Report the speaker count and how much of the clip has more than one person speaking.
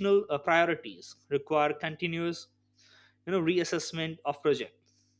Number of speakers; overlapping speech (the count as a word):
one, no overlap